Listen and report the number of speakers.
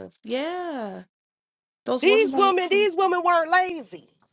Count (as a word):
two